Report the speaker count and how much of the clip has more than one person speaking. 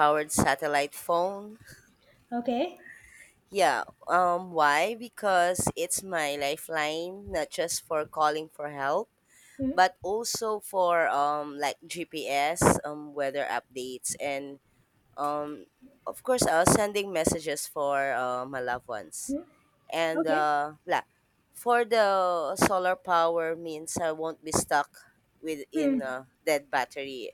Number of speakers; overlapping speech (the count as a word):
two, about 2%